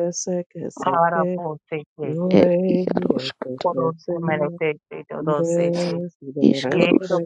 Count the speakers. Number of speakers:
three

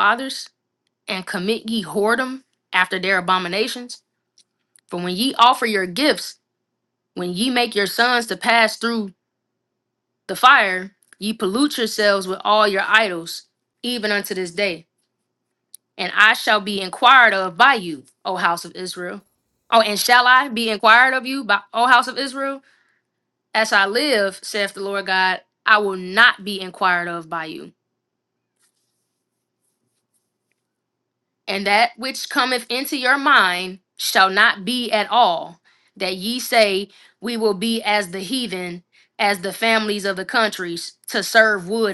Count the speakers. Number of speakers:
one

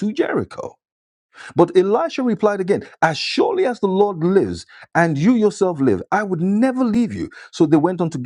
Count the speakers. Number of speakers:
one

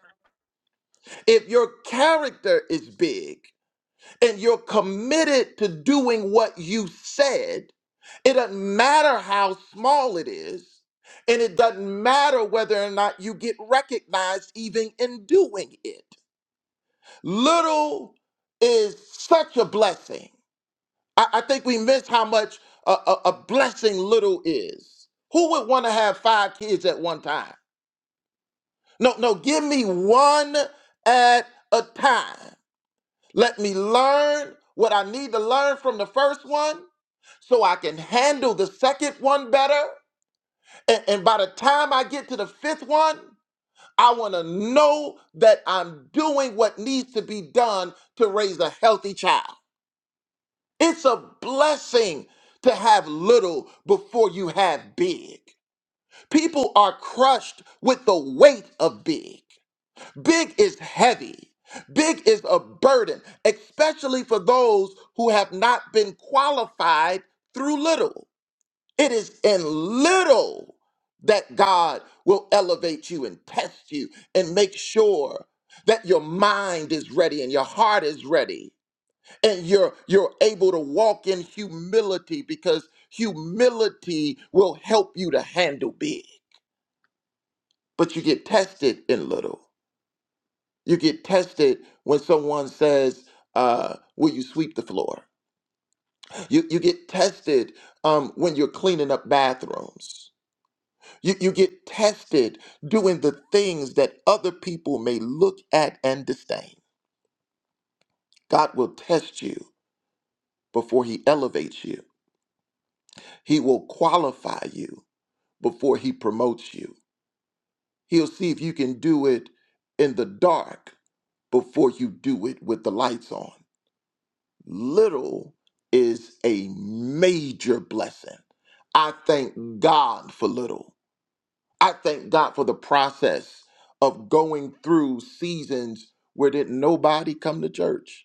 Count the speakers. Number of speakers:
one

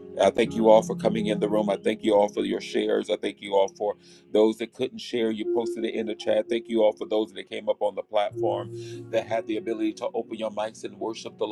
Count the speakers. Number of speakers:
one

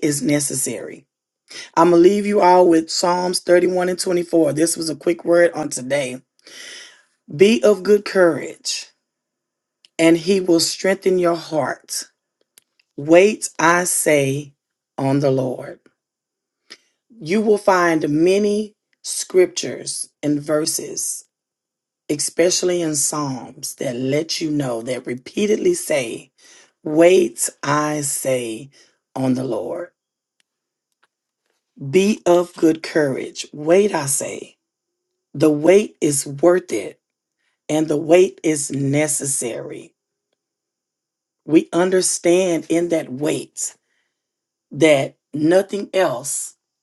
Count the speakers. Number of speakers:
one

